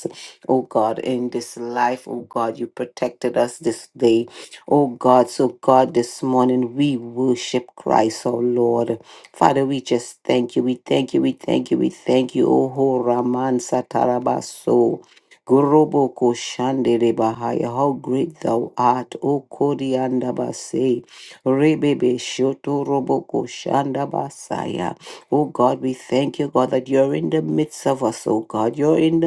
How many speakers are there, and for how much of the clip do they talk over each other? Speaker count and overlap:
1, no overlap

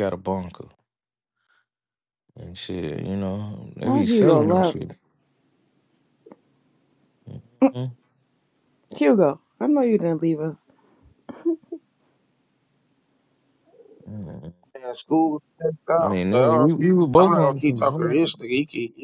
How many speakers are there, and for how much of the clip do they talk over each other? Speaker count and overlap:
3, about 14%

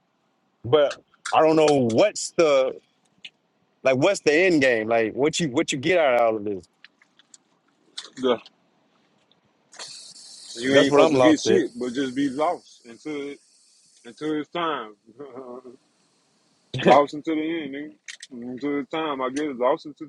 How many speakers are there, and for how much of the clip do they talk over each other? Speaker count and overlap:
2, about 5%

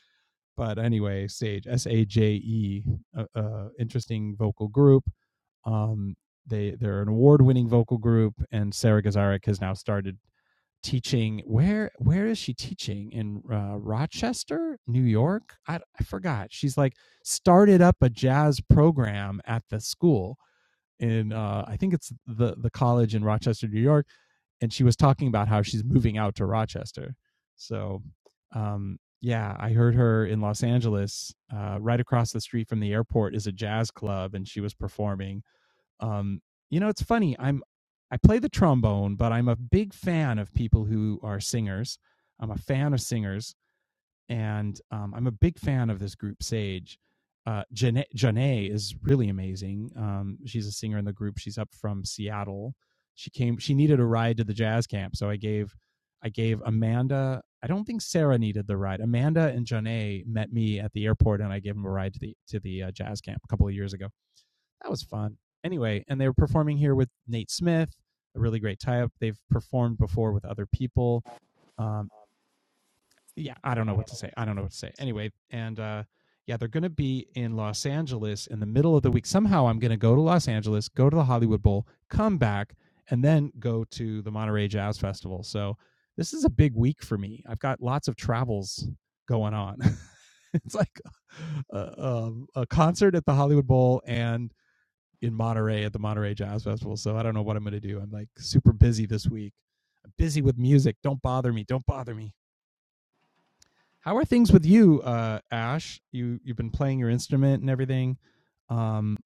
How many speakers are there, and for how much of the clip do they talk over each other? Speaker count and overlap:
1, no overlap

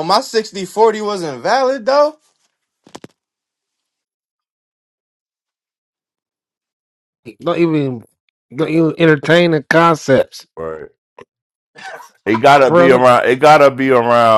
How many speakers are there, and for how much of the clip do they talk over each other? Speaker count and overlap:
3, about 2%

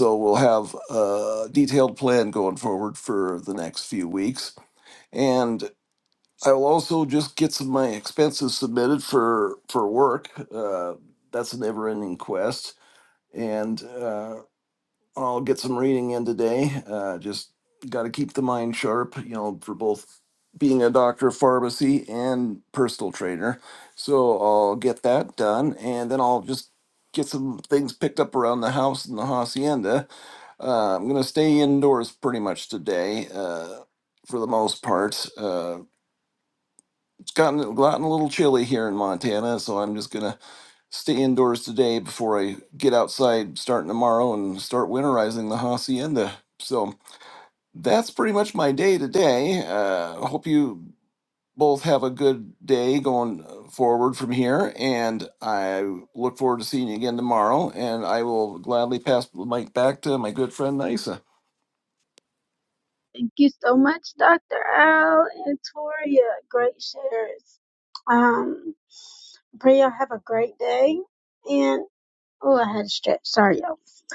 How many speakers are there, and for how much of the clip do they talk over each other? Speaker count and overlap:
2, no overlap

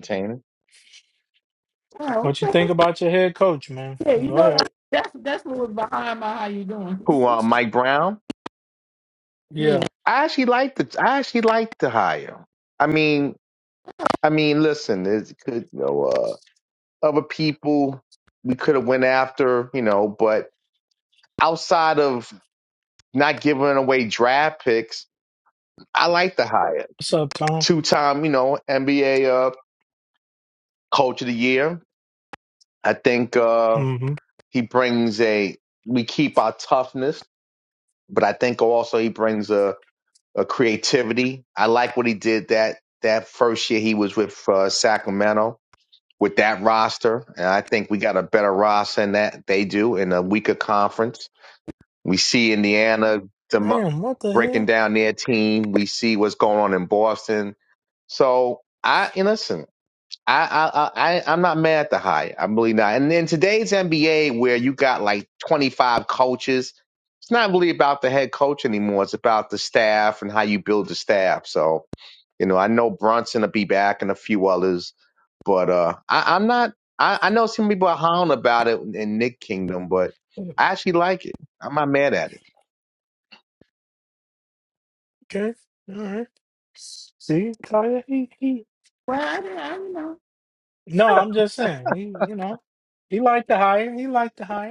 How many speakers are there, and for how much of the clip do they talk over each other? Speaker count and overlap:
3, about 2%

